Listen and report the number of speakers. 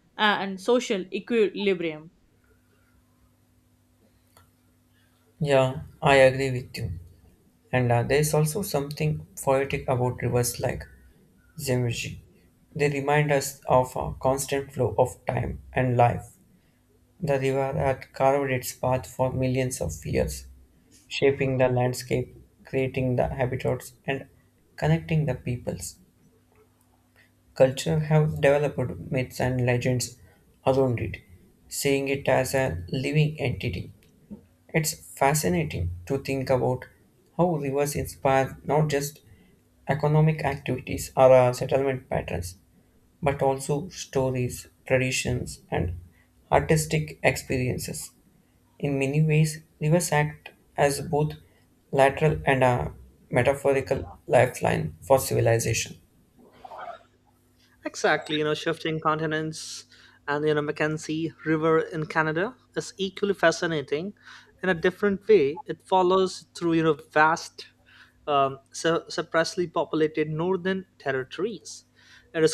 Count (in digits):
3